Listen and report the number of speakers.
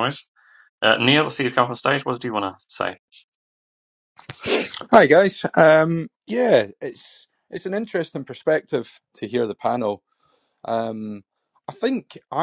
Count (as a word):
two